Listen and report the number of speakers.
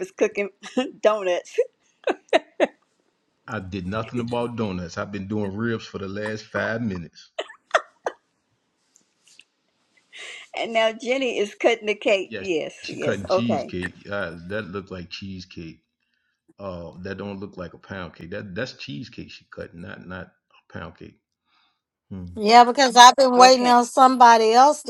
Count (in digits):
3